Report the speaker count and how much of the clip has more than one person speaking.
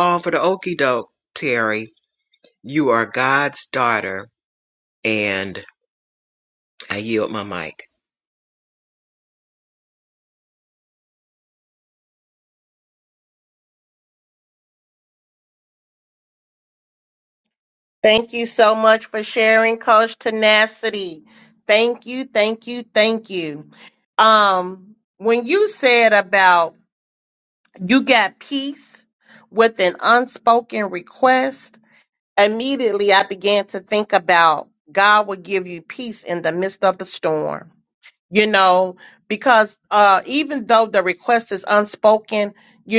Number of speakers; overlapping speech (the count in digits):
2, no overlap